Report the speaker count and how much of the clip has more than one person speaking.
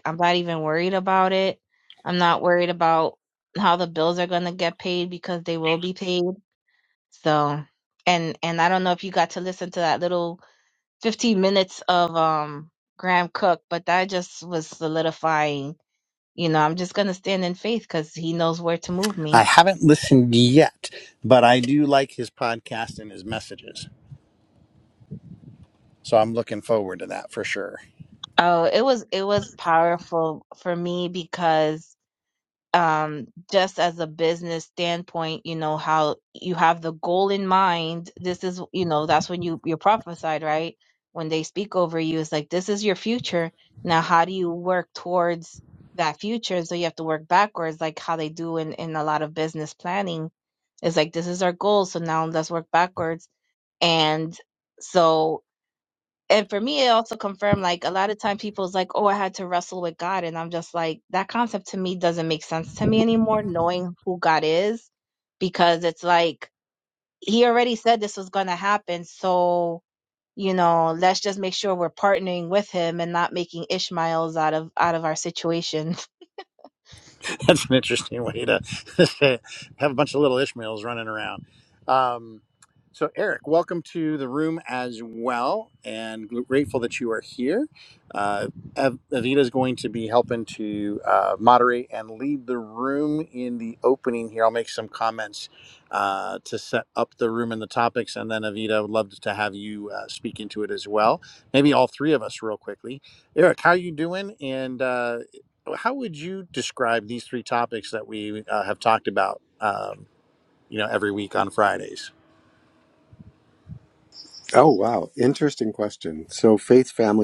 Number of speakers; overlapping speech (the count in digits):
3, under 1%